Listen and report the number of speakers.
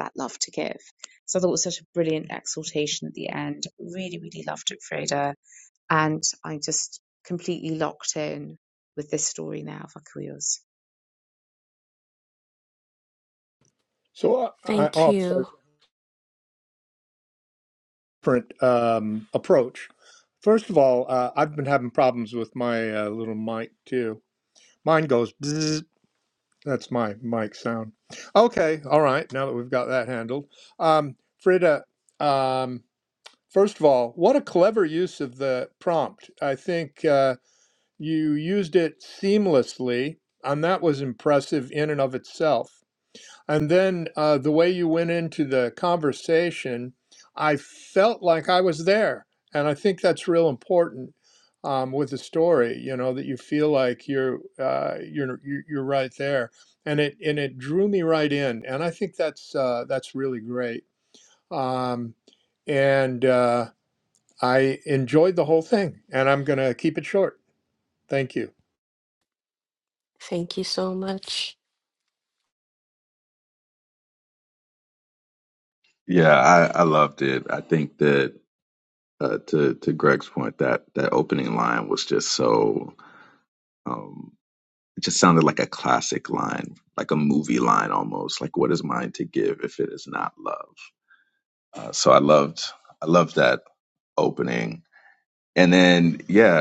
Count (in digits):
4